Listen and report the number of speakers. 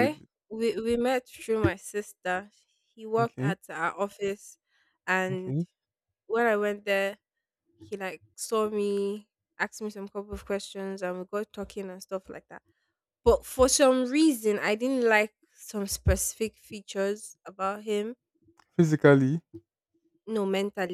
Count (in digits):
2